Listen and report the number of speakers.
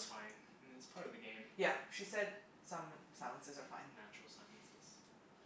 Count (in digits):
2